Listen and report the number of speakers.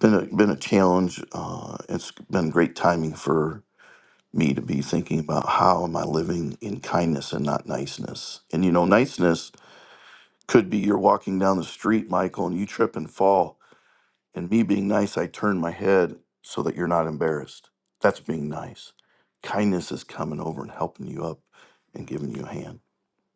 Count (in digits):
1